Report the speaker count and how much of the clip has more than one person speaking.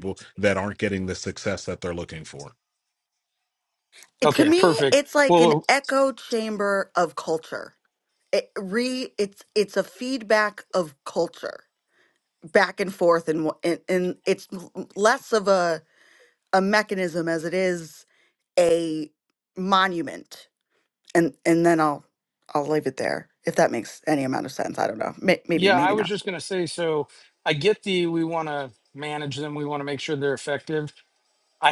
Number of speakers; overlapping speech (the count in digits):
3, about 5%